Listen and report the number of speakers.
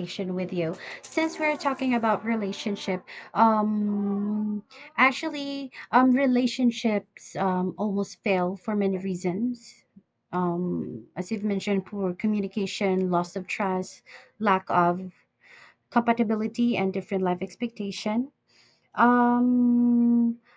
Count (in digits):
1